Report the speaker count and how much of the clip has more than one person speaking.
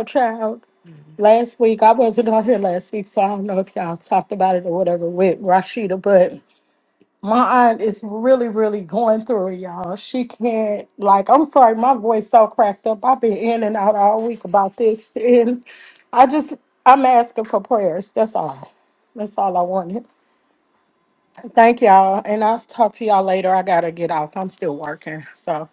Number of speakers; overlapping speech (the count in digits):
1, no overlap